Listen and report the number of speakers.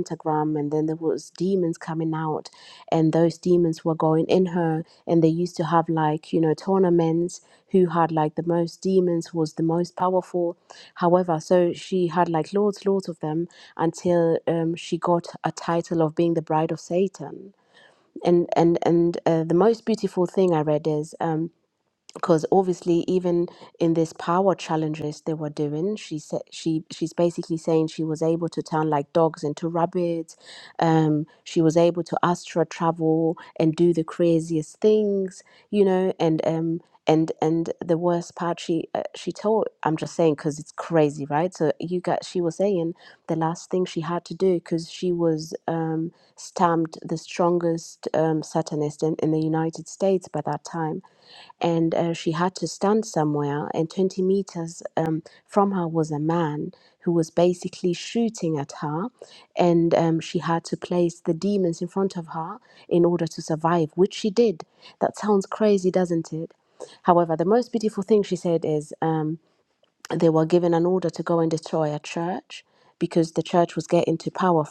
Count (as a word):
one